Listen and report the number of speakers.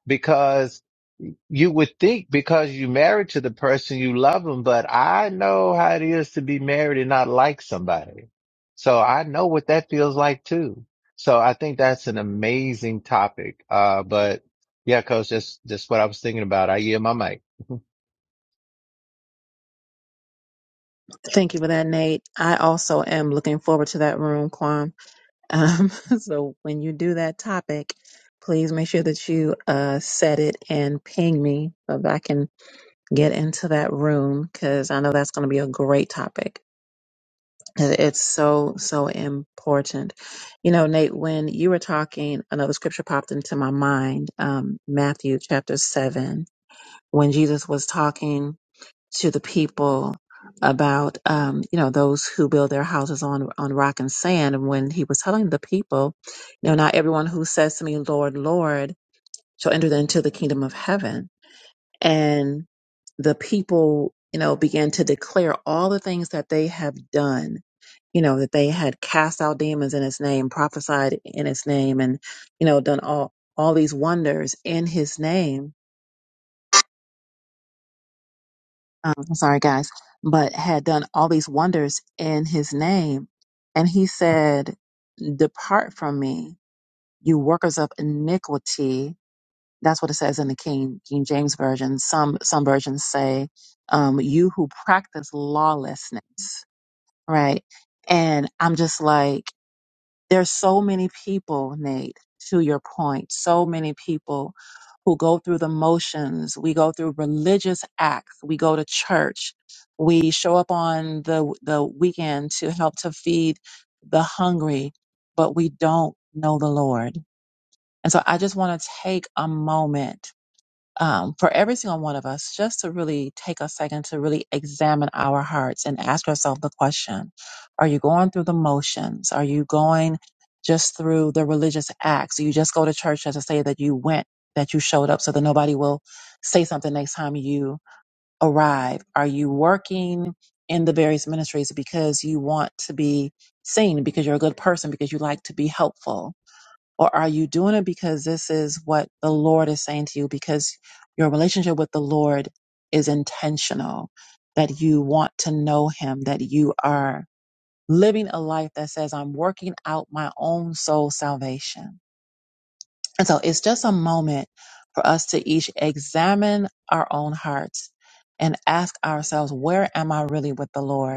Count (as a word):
two